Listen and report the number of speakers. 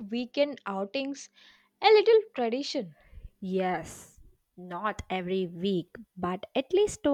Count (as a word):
two